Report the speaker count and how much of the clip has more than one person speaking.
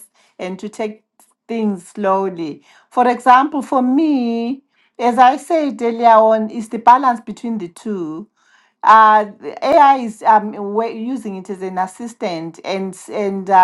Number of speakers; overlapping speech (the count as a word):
one, no overlap